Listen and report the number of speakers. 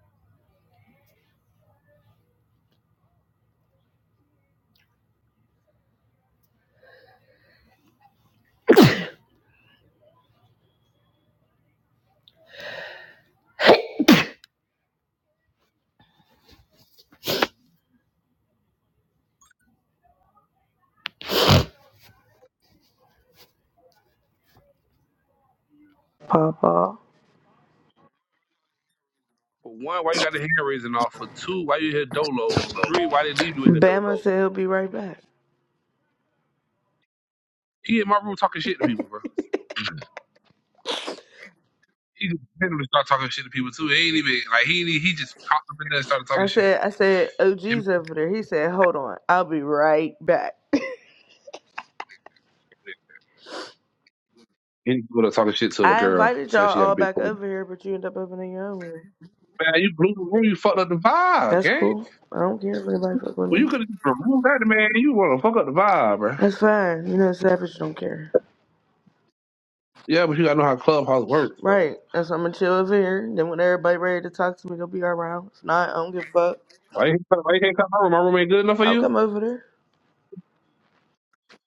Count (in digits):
2